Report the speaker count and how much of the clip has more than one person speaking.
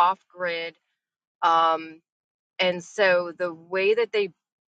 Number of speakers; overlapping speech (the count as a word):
one, no overlap